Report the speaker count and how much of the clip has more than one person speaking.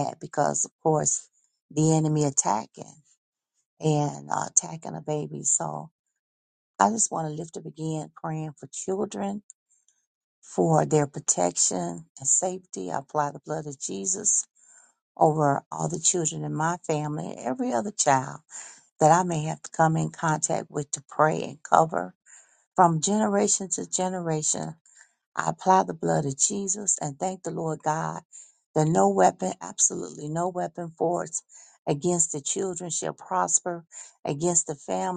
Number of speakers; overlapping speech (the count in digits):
1, no overlap